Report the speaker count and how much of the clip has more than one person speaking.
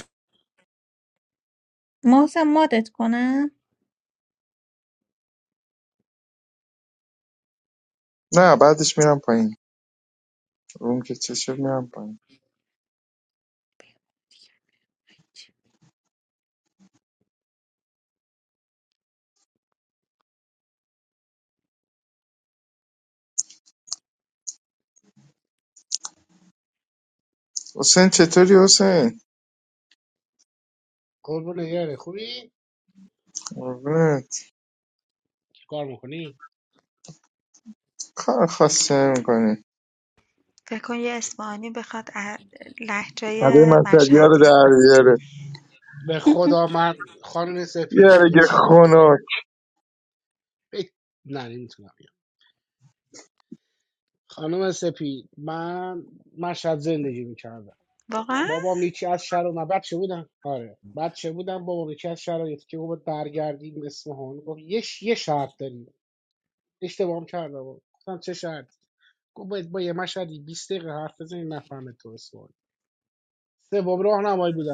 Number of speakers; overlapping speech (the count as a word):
four, about 3%